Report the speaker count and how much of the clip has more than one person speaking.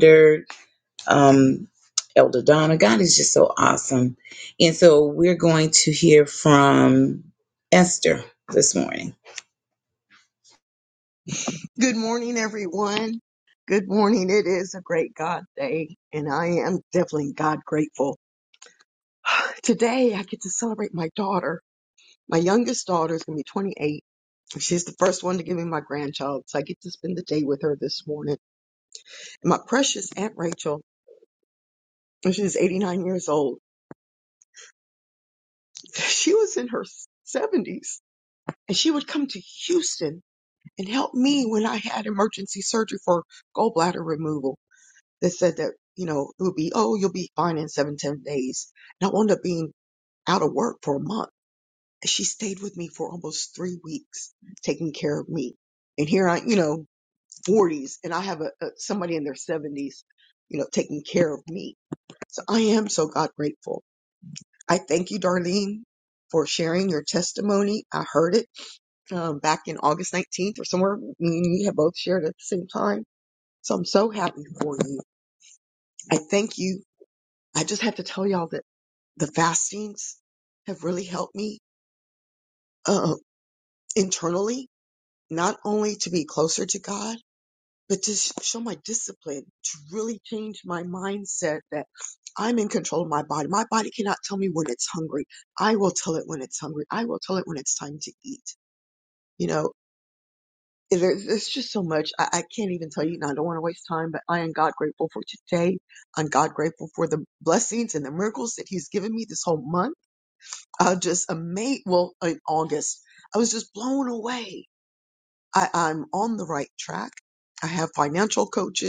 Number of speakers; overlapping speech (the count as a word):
two, no overlap